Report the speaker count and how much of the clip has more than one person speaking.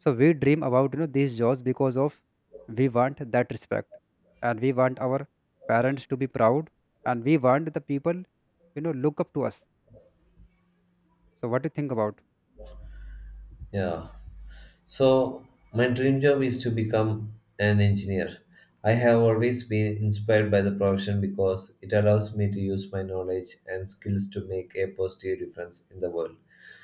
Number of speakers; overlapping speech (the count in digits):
2, no overlap